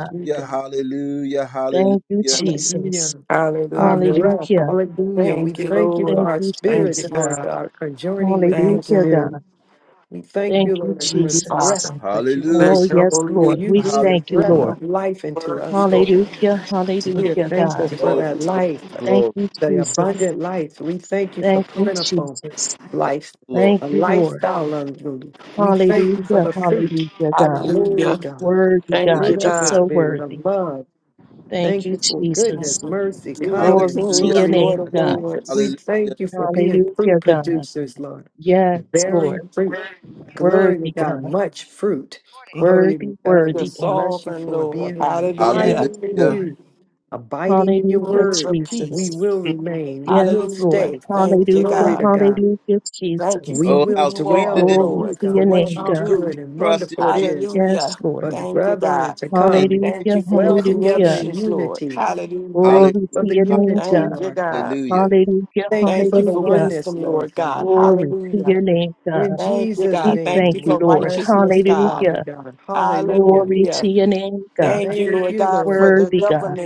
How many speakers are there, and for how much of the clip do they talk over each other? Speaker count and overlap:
4, about 68%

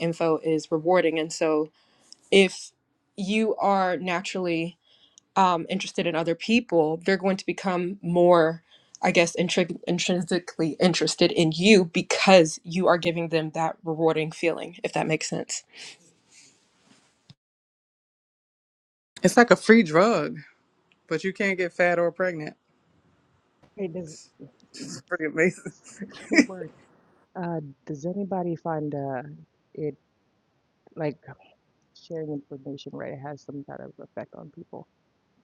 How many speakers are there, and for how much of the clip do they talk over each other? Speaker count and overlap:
3, no overlap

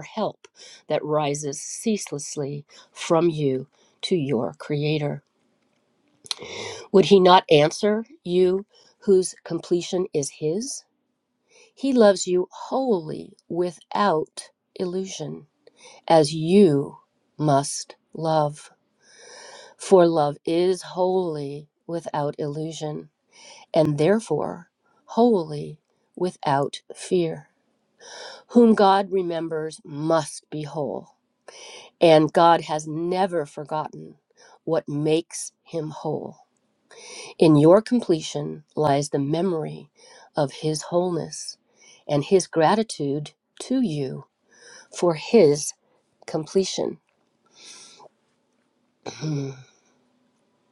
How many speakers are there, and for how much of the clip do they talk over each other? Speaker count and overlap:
1, no overlap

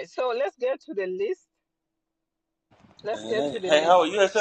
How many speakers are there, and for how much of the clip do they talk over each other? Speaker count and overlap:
2, about 18%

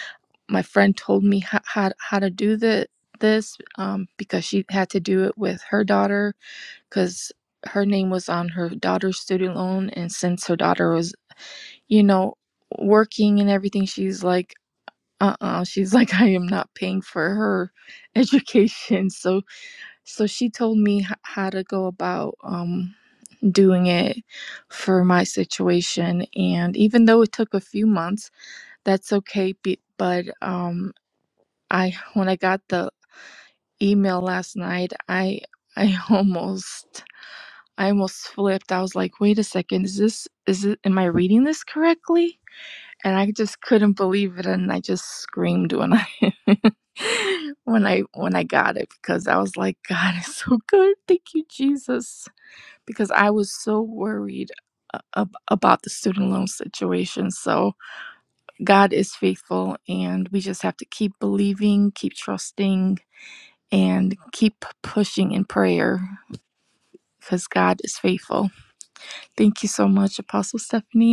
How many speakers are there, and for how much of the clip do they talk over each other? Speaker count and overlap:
1, no overlap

